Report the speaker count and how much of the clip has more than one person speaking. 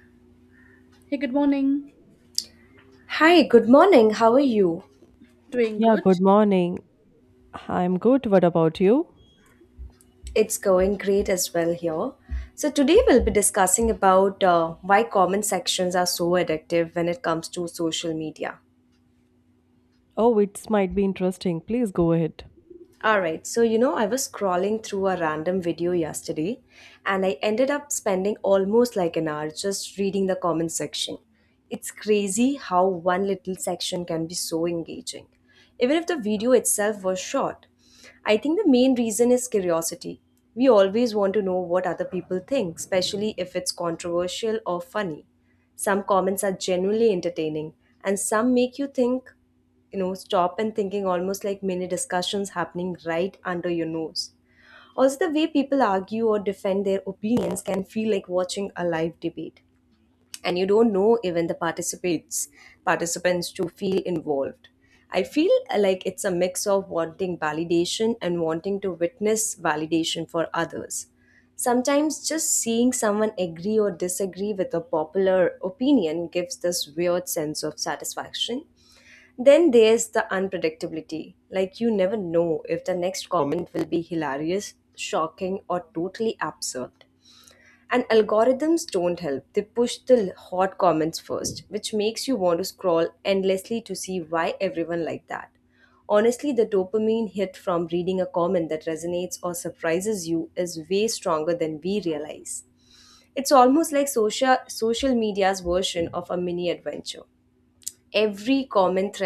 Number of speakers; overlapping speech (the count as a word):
three, under 1%